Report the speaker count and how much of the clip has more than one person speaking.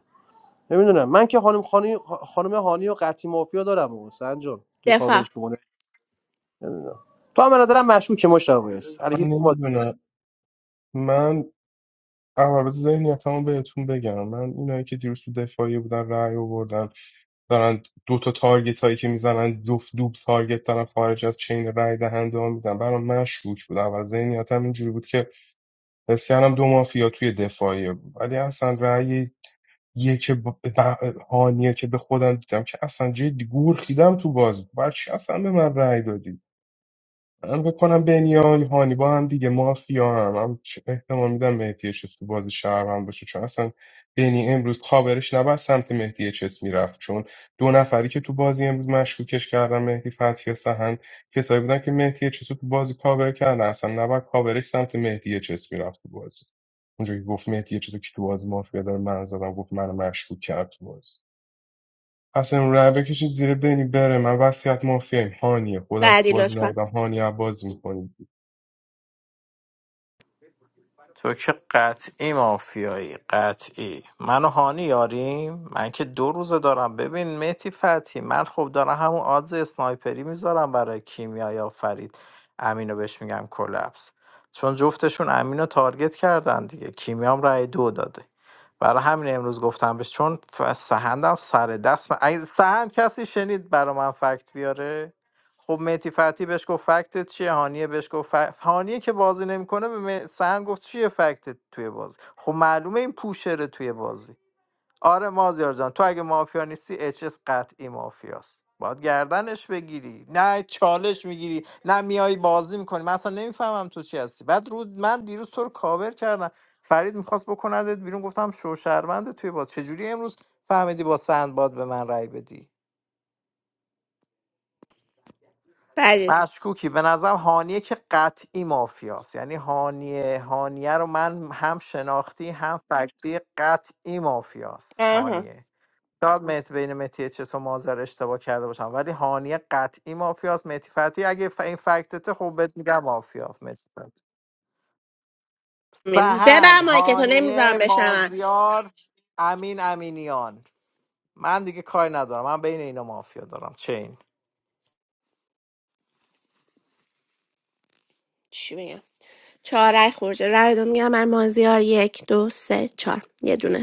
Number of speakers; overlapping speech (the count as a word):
four, about 2%